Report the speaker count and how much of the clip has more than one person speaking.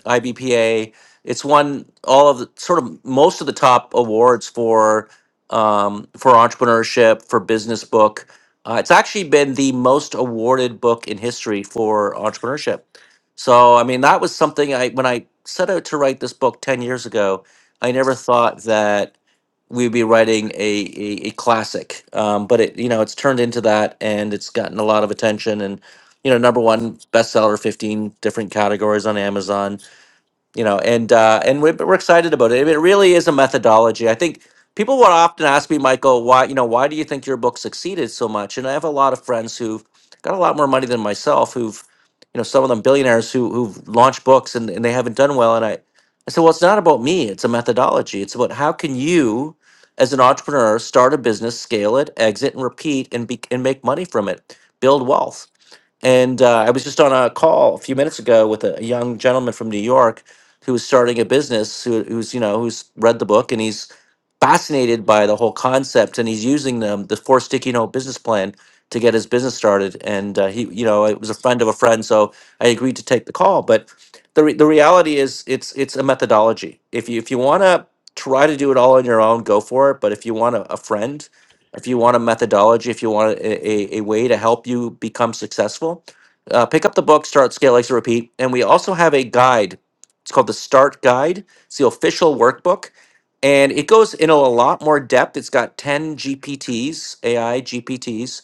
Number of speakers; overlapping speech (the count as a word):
one, no overlap